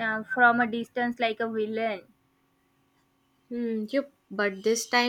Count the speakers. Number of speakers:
2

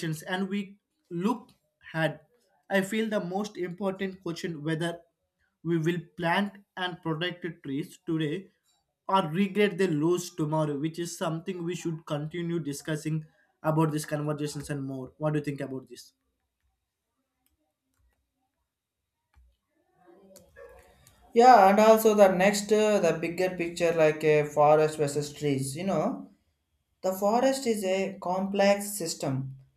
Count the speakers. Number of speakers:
2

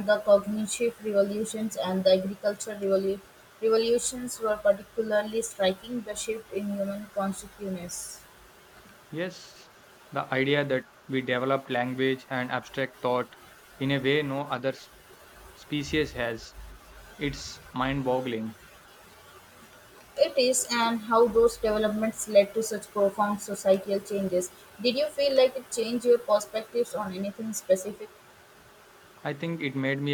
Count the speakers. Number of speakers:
2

